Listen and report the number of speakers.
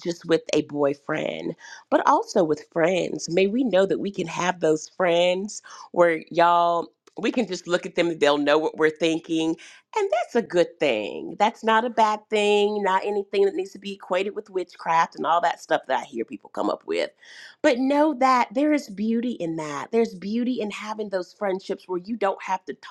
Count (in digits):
1